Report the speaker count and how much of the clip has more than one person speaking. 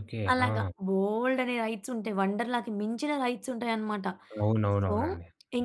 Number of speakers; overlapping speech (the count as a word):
two, about 7%